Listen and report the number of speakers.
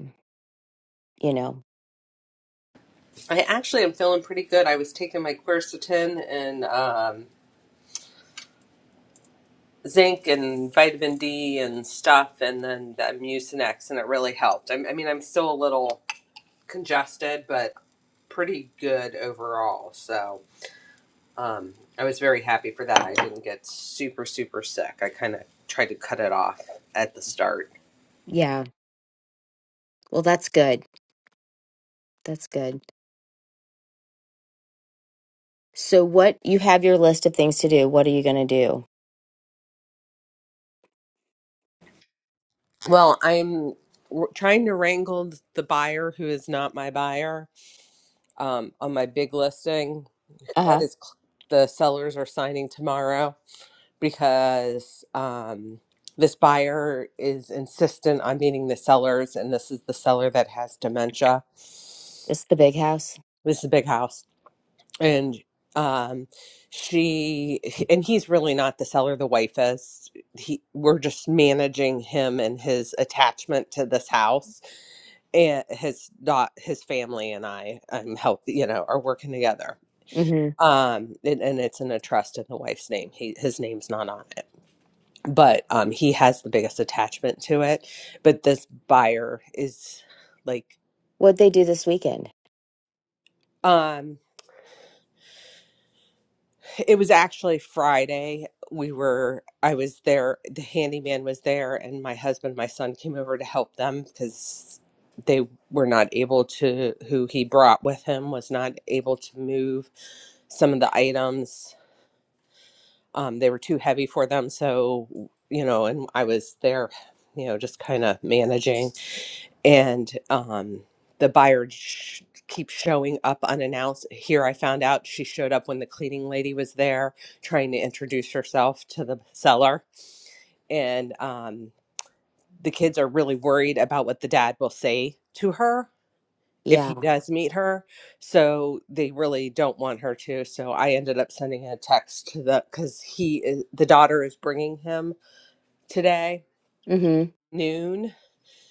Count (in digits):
2